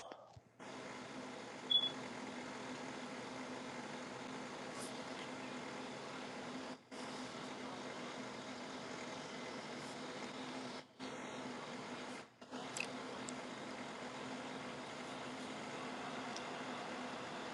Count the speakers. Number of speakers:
0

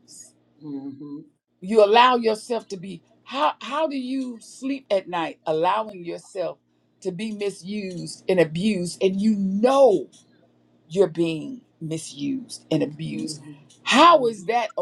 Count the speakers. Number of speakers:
2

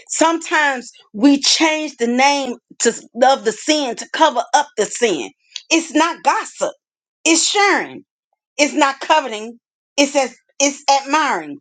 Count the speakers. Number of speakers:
1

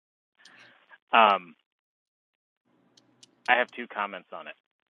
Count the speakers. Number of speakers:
1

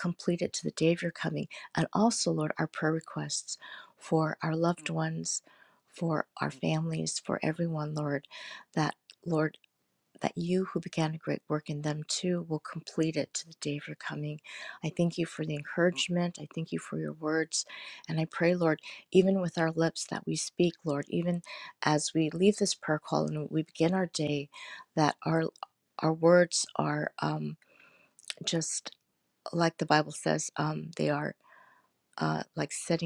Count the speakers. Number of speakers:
1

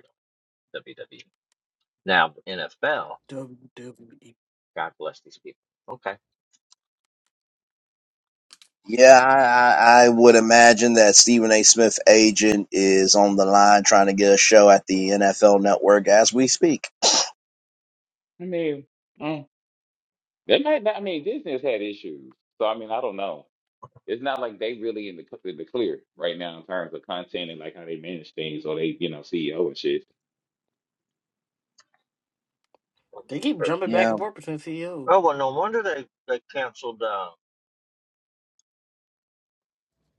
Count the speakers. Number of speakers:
4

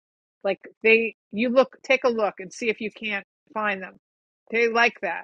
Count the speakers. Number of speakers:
1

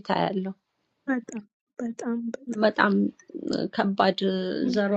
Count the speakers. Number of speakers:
2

